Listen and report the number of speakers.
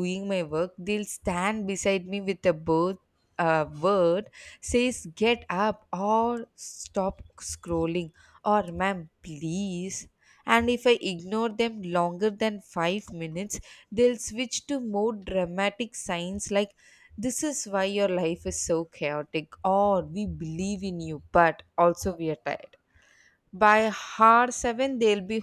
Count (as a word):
one